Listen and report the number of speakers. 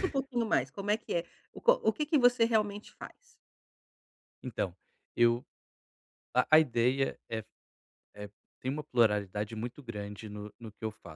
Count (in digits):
2